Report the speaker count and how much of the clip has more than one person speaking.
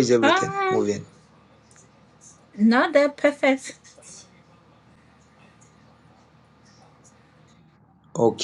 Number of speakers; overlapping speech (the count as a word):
two, about 8%